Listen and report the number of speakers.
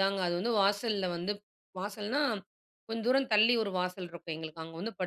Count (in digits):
1